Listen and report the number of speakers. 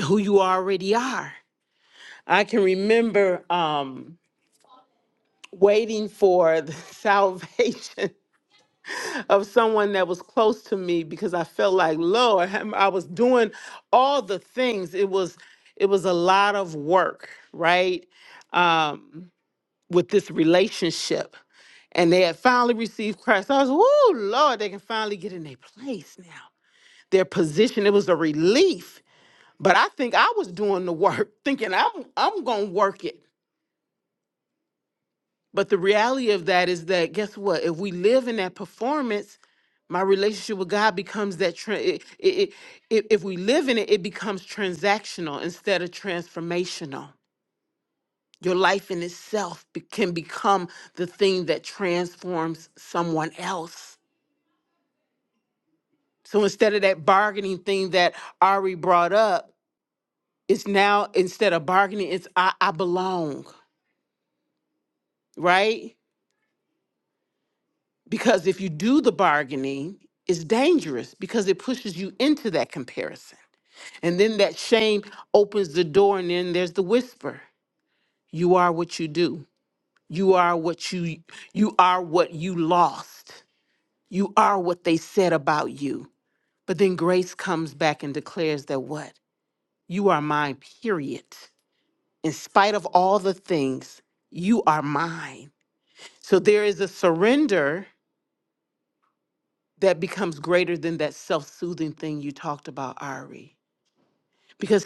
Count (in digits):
1